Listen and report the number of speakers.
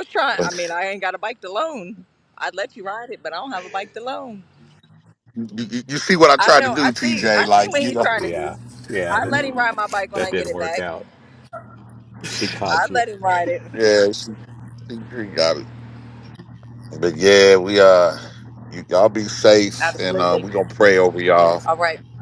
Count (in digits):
3